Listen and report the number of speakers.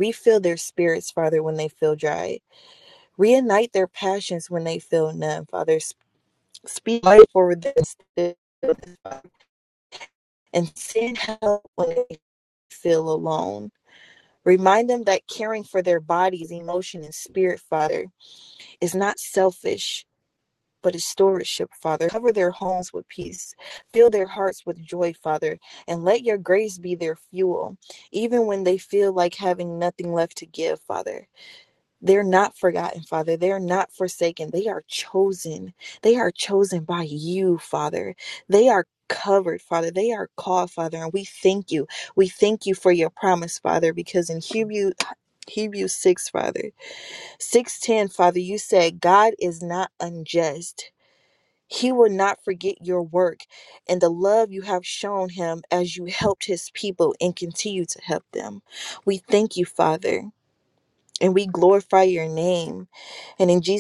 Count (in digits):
1